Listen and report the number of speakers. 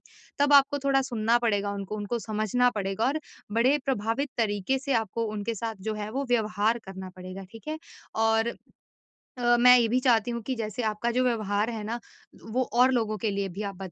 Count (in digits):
1